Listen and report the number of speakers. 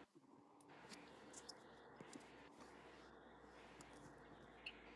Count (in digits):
0